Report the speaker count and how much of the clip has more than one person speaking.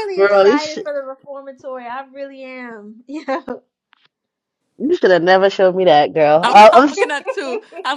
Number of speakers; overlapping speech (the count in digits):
3, about 15%